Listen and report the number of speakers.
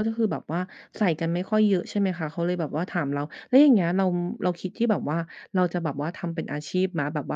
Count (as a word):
one